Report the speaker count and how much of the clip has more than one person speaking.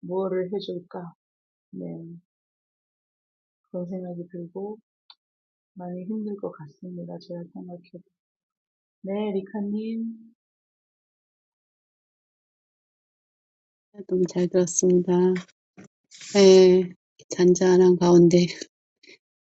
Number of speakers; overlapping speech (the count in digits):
2, no overlap